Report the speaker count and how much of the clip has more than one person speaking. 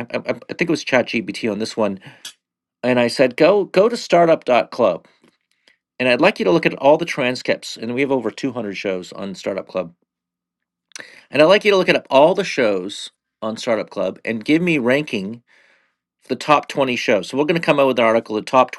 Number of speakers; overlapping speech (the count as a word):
one, no overlap